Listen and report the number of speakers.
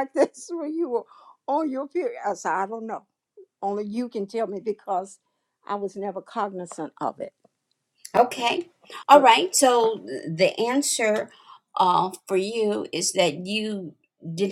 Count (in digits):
2